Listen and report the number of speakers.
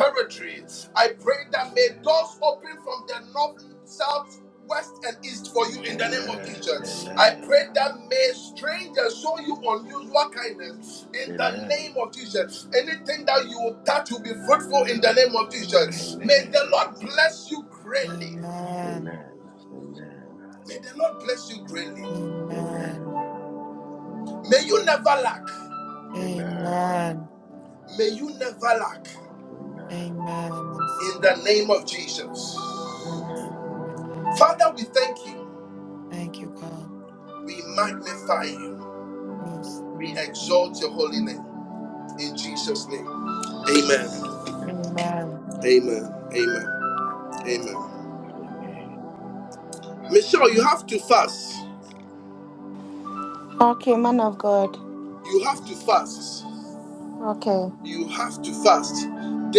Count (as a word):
four